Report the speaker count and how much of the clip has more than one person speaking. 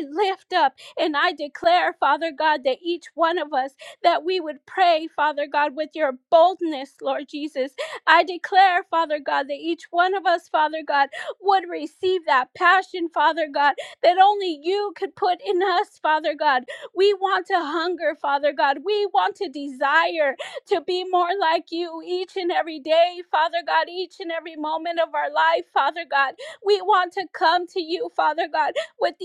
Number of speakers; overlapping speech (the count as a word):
one, no overlap